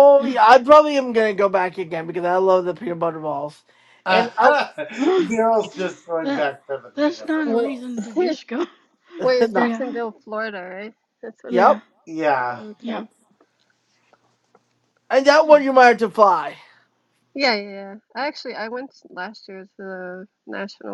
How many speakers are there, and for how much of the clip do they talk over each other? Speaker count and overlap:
four, about 16%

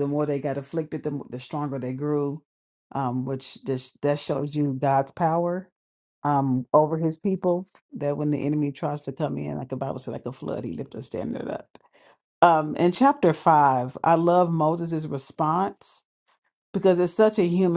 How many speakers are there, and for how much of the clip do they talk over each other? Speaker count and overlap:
one, no overlap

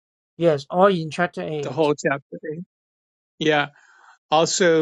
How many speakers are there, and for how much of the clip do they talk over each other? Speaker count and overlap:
two, about 1%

